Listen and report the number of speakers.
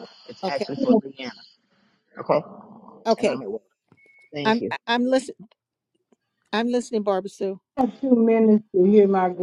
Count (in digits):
3